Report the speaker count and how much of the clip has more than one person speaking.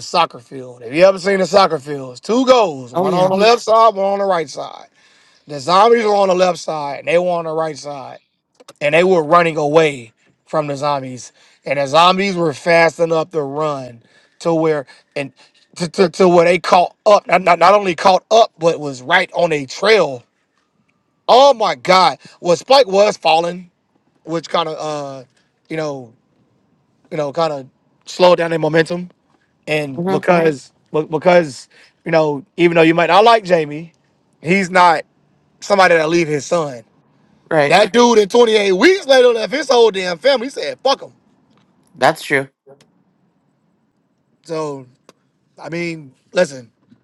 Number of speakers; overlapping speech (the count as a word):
two, about 1%